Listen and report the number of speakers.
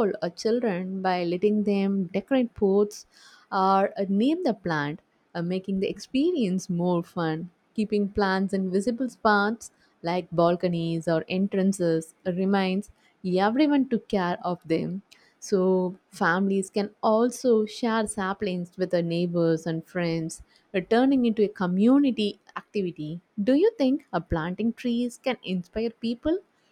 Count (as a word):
one